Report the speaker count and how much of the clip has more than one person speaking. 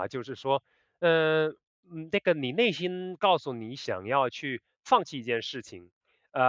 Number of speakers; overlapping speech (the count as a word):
one, no overlap